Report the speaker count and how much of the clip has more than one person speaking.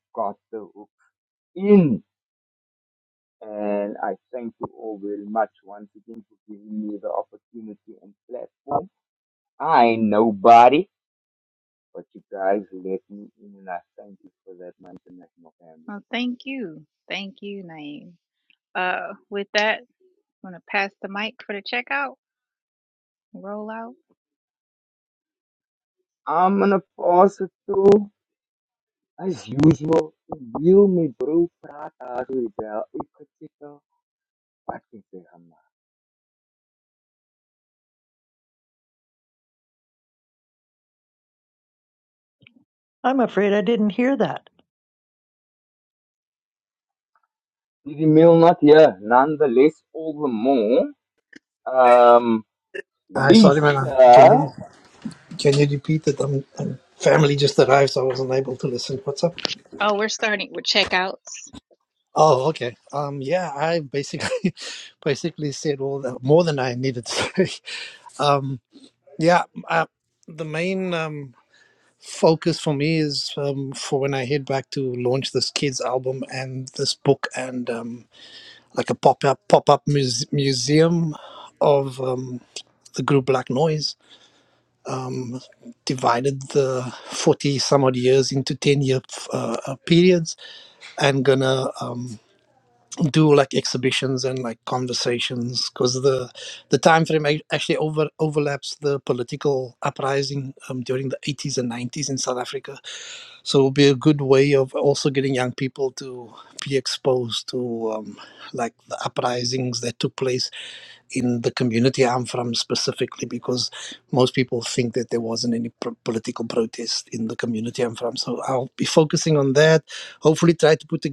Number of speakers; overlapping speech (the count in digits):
4, about 1%